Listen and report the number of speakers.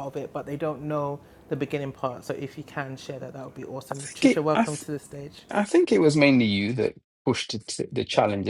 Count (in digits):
2